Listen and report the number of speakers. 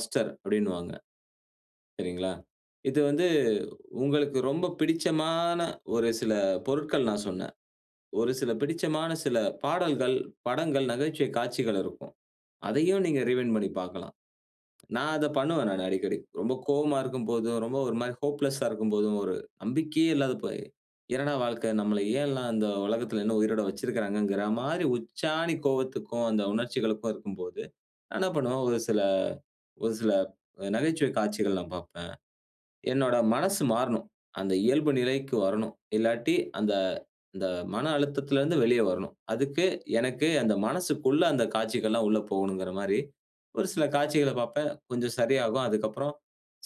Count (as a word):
one